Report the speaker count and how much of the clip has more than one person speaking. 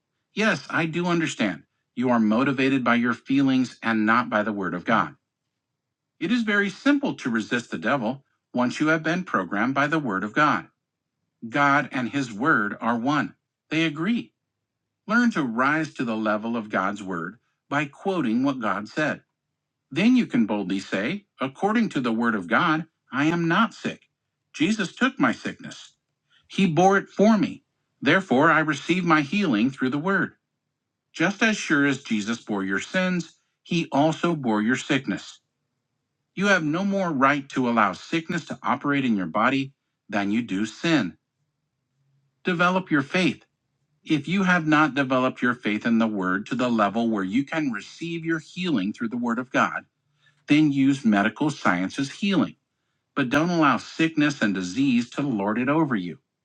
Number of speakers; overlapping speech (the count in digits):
1, no overlap